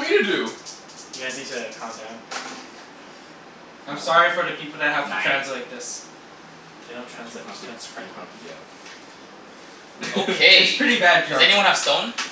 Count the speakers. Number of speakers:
4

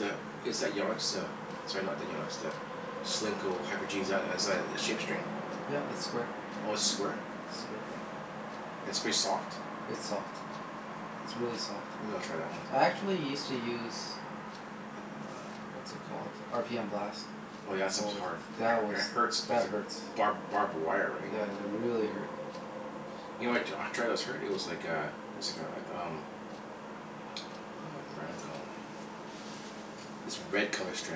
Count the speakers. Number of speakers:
2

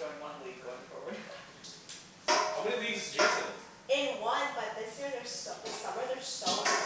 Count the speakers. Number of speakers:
3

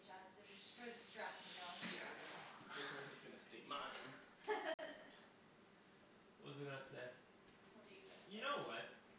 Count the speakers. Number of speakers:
3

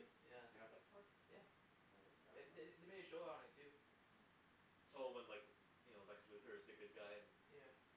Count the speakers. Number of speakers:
3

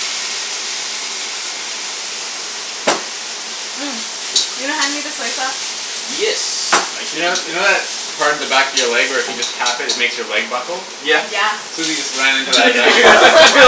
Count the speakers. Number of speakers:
3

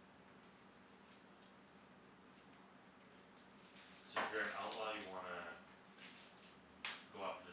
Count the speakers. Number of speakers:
1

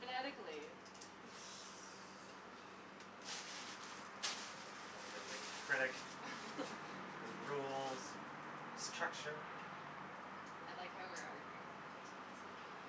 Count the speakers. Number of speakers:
2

